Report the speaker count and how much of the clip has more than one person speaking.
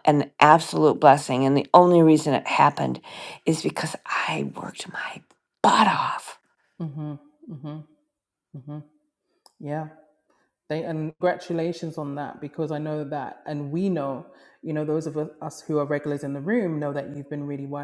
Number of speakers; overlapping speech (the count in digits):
2, no overlap